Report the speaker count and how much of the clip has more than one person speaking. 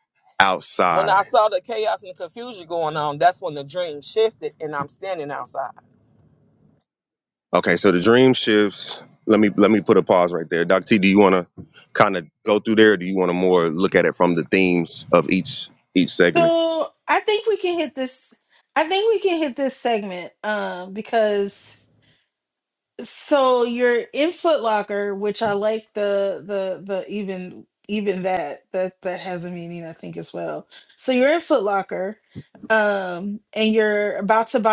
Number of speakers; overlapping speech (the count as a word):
three, about 1%